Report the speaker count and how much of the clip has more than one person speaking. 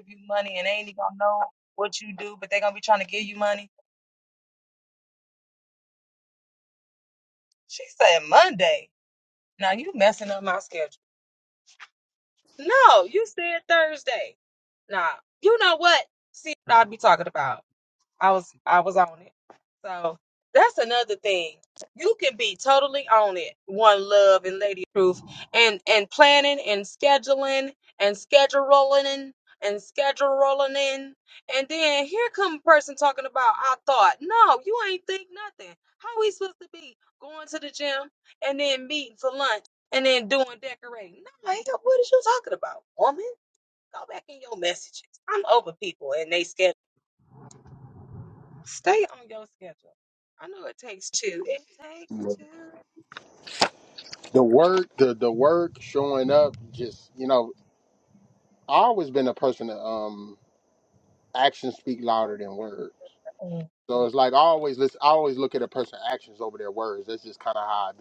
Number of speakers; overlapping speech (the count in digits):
2, no overlap